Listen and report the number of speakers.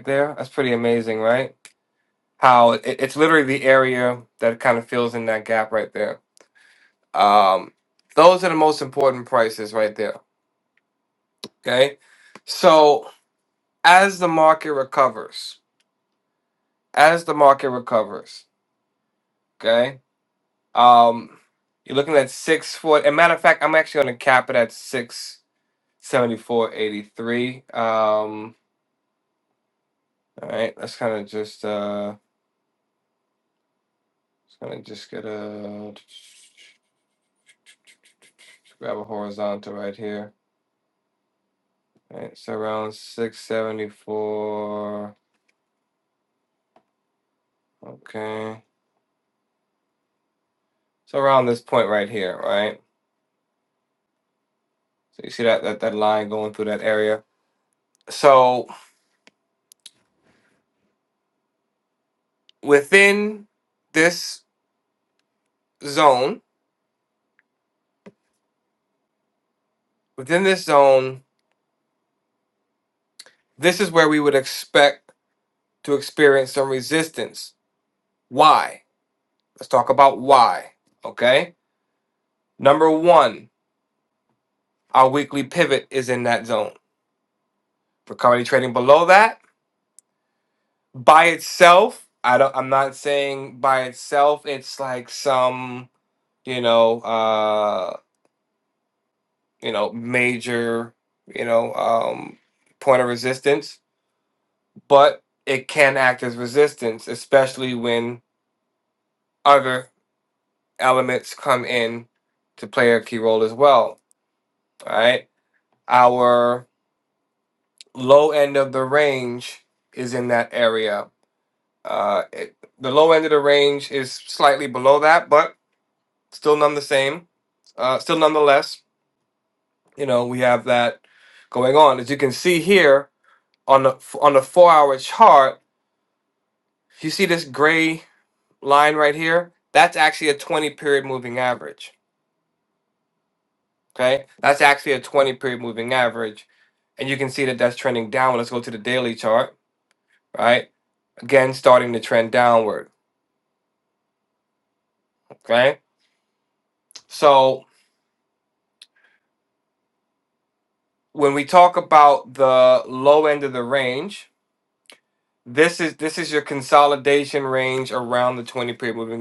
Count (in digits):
1